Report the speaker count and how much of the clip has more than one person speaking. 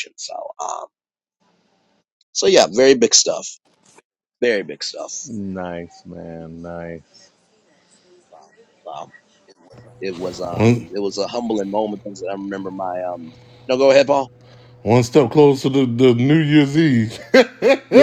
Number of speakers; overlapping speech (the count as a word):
three, about 2%